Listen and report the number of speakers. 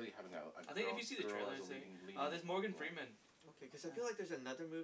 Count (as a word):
three